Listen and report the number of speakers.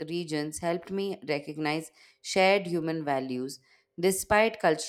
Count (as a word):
one